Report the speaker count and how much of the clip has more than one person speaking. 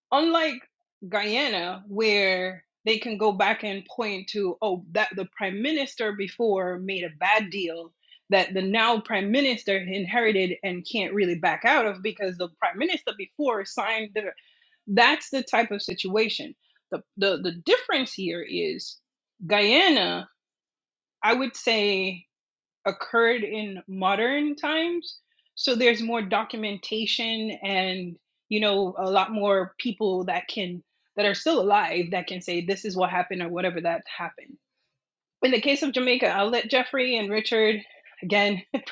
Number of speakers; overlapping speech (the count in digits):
1, no overlap